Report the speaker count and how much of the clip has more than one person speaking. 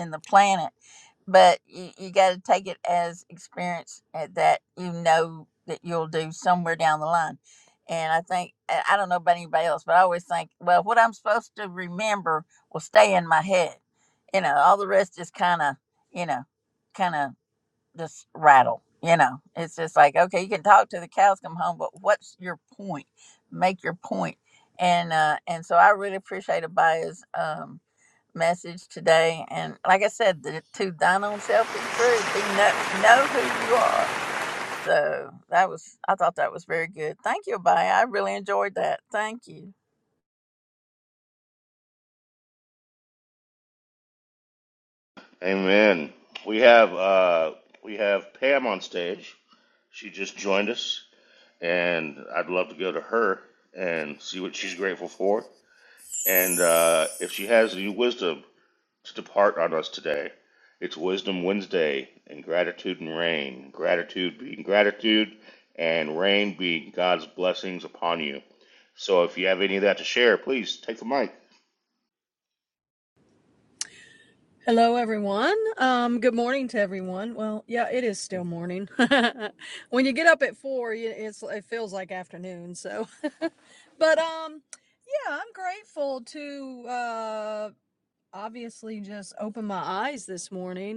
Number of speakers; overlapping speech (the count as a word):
three, no overlap